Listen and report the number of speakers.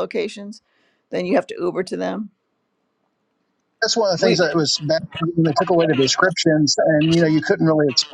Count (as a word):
two